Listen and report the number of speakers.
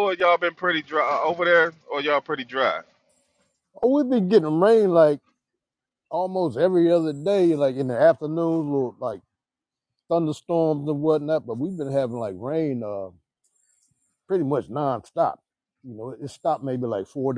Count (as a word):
two